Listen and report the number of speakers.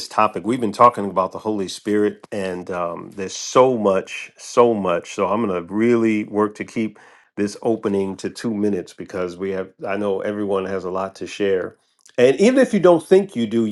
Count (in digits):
1